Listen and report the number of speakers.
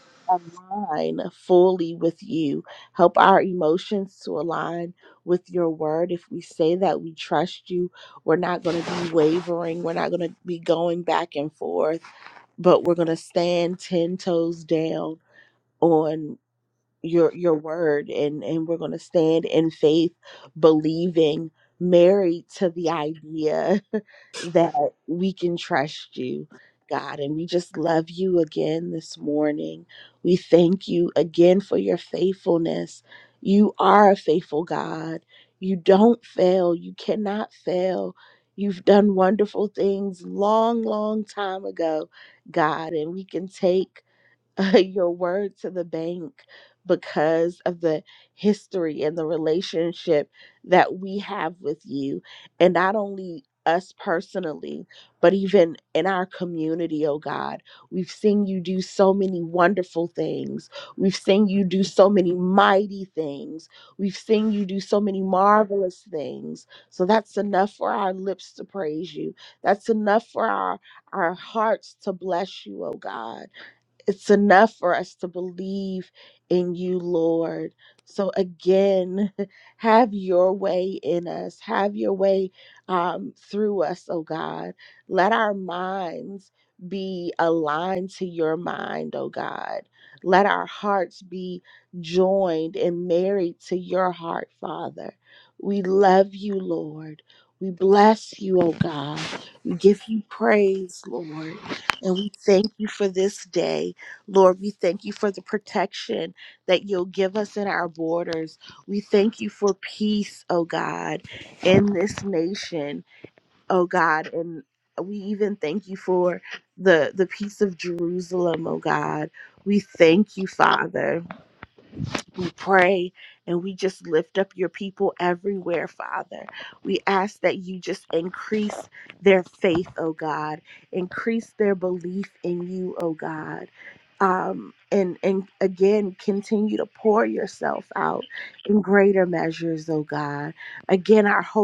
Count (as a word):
one